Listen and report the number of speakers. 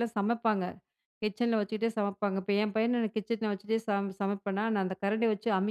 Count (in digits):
1